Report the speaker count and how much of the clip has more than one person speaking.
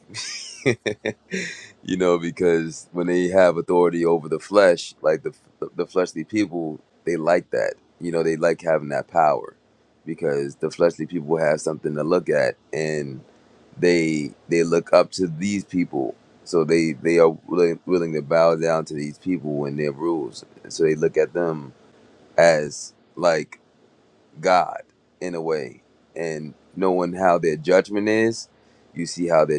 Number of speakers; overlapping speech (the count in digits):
1, no overlap